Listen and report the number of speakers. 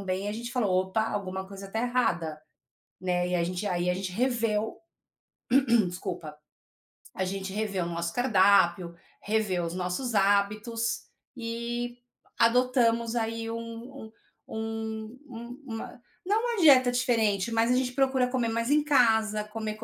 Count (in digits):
1